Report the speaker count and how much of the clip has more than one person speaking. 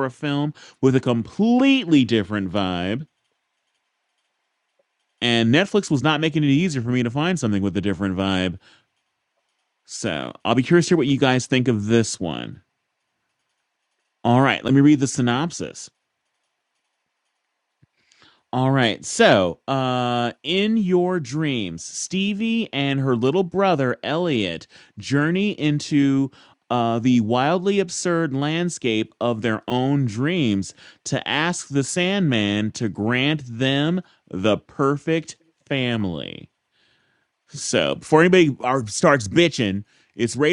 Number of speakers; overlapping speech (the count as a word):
one, no overlap